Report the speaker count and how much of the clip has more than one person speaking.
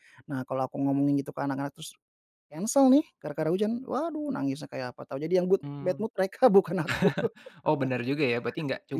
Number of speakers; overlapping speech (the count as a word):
two, about 5%